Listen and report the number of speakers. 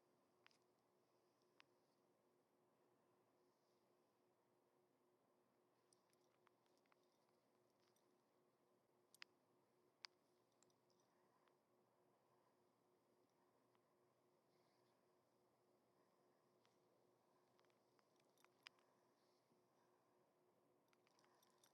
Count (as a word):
zero